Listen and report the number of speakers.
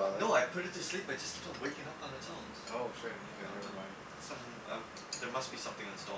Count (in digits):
2